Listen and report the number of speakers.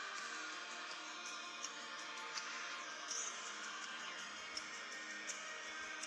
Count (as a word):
zero